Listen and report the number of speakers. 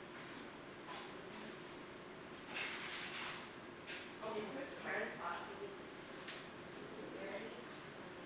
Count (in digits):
1